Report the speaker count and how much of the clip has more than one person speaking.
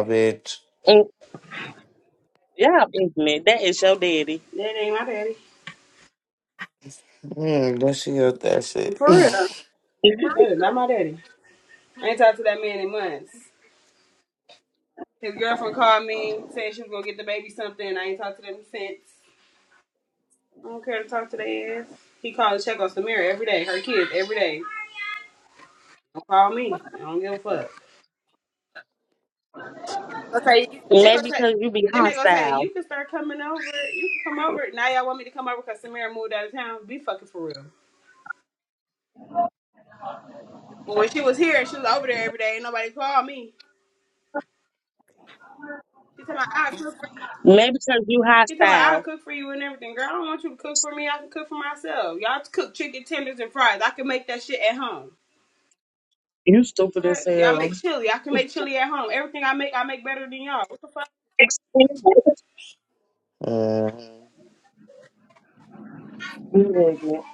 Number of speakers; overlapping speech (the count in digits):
3, about 4%